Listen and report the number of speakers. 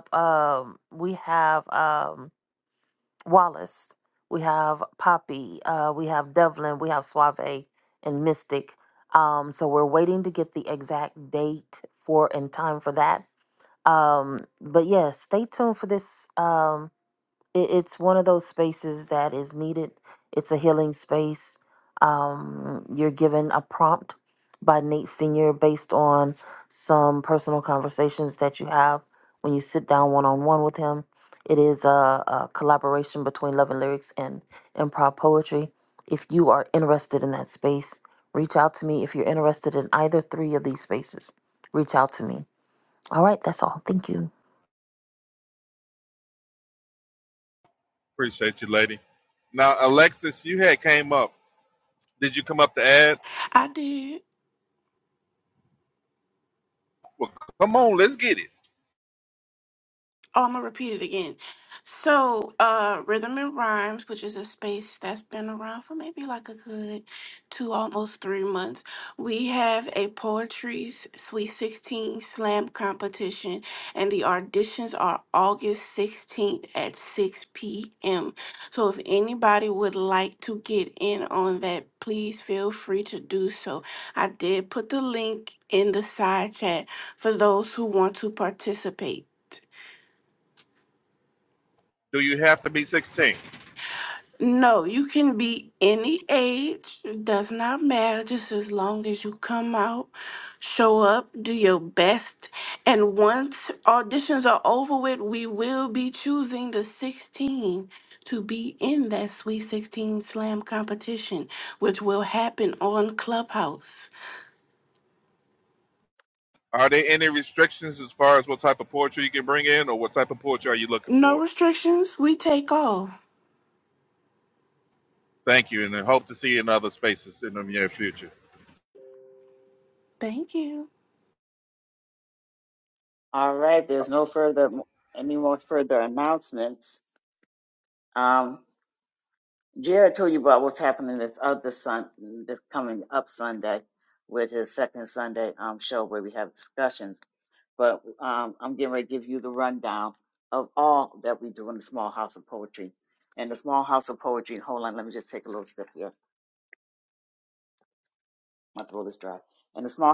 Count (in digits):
4